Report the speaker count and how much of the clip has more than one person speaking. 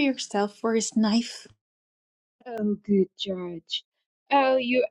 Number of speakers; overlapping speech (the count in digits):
2, no overlap